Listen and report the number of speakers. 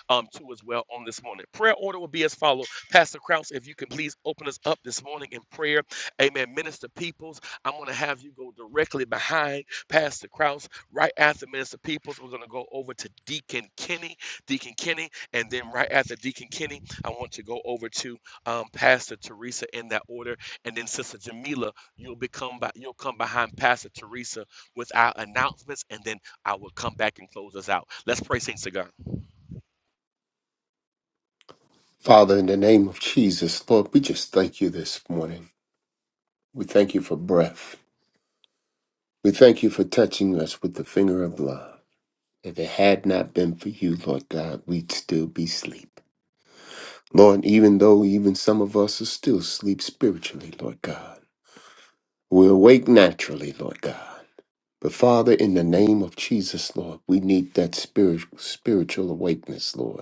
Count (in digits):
2